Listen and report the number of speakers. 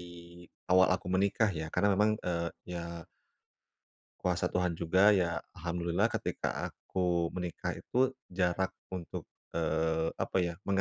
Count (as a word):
one